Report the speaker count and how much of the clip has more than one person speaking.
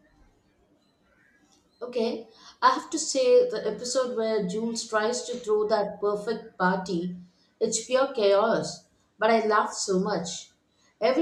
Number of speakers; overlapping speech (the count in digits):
1, no overlap